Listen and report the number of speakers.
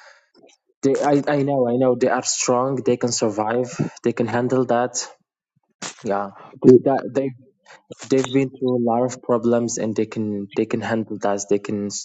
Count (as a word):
one